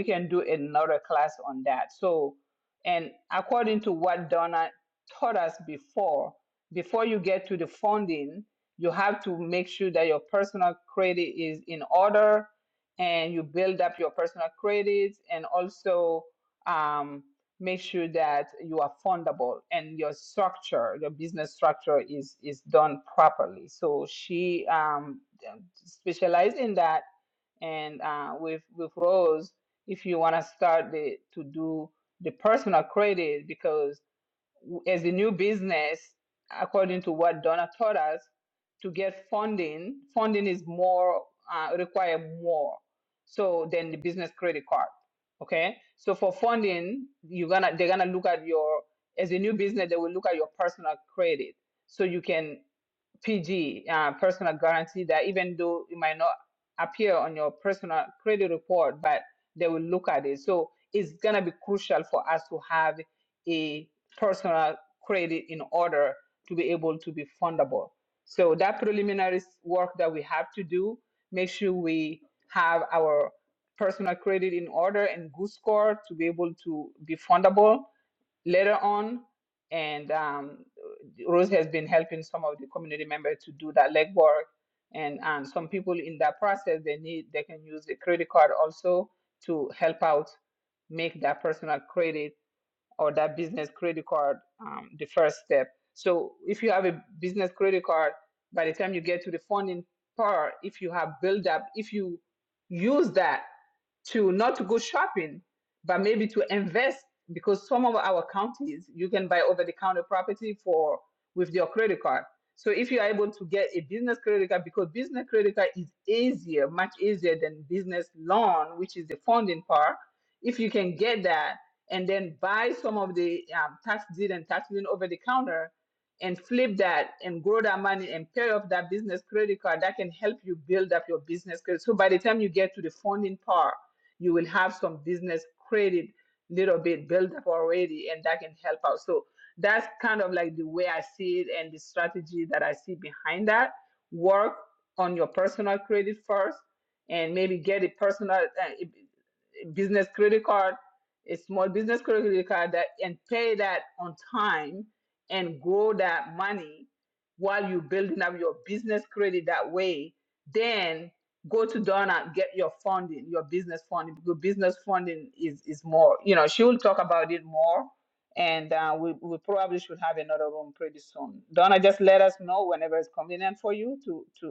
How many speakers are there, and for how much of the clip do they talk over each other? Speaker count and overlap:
1, no overlap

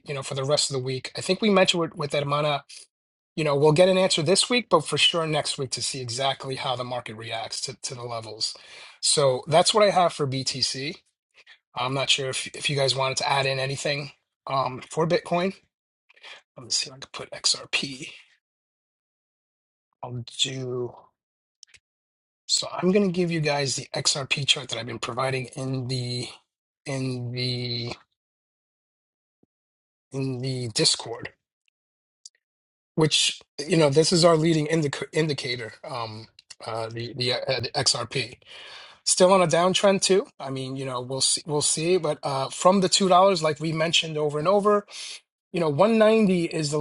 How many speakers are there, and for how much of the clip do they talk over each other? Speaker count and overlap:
1, no overlap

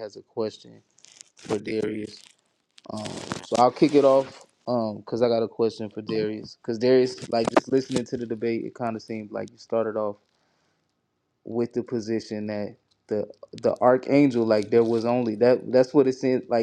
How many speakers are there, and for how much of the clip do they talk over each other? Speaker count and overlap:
1, no overlap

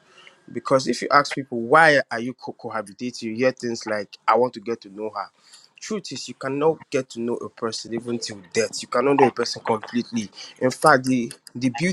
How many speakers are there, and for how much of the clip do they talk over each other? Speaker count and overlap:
1, no overlap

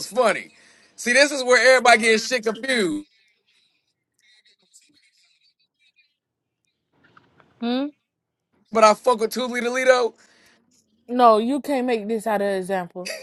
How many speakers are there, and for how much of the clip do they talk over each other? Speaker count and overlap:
2, no overlap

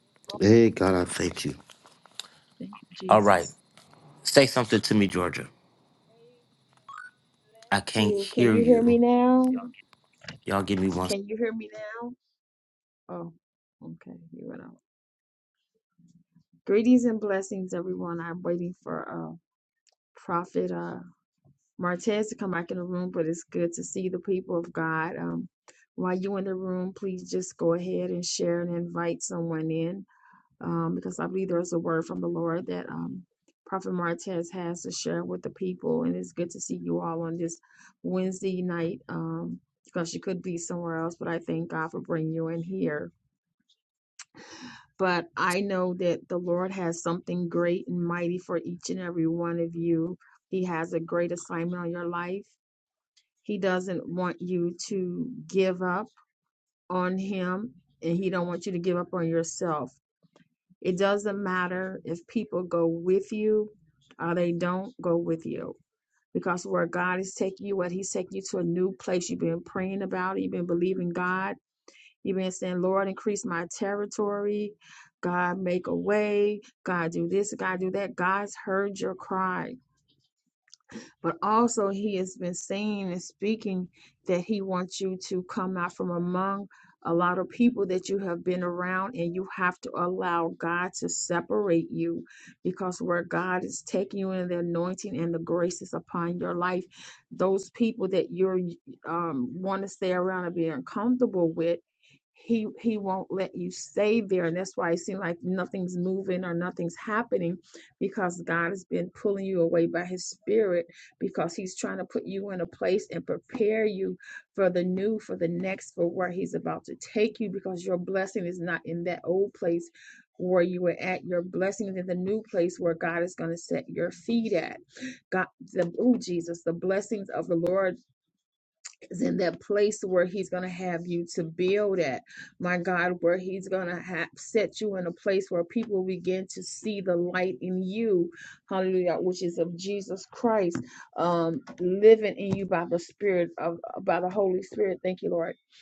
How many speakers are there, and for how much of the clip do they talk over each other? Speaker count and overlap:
2, about 1%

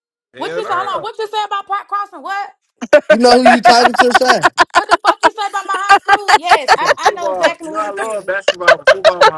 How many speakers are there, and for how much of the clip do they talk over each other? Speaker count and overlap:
3, about 24%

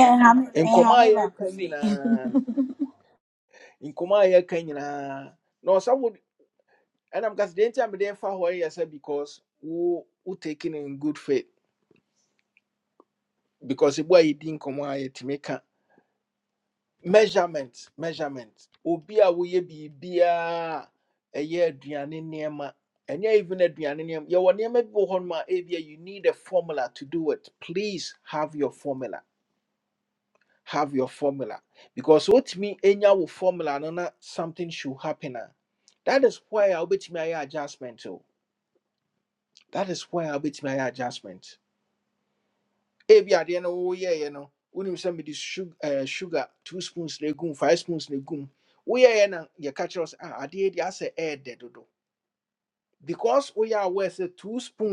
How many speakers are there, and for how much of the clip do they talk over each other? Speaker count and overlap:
2, about 2%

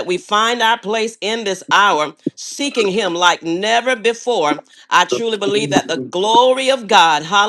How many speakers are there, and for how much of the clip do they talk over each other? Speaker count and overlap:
1, no overlap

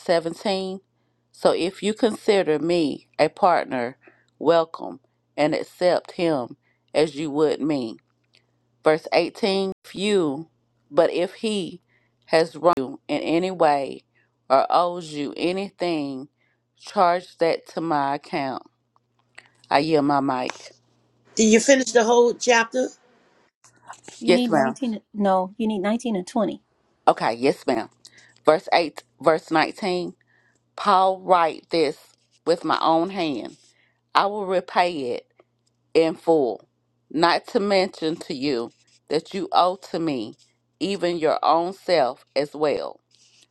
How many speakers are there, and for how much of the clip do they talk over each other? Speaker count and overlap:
3, about 1%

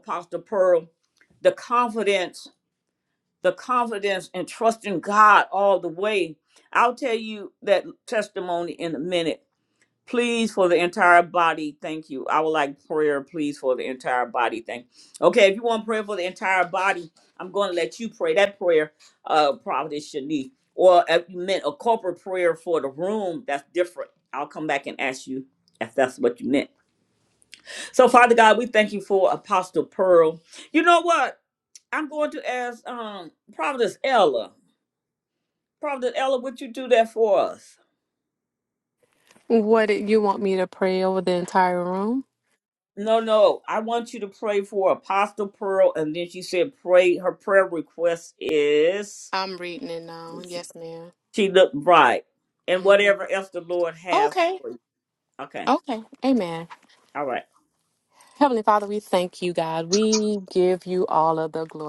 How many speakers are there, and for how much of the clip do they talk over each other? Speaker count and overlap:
2, about 1%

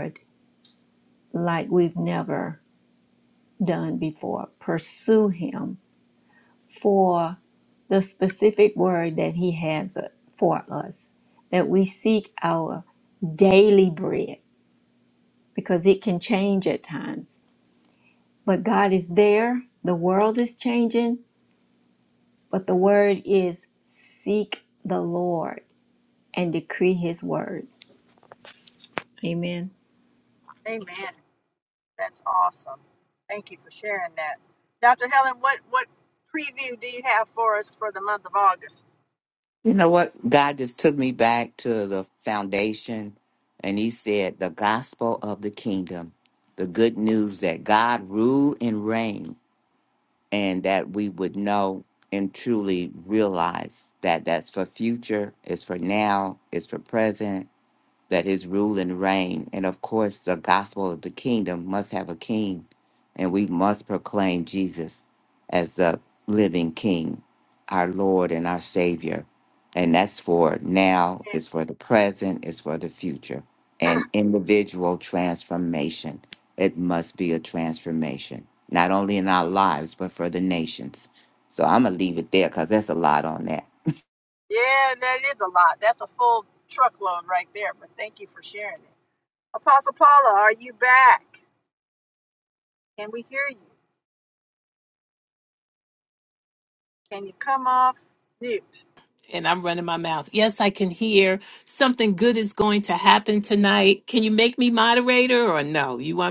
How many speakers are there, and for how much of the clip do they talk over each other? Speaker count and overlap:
4, under 1%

